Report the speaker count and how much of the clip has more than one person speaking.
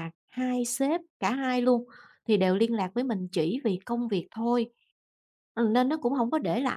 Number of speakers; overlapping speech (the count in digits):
1, no overlap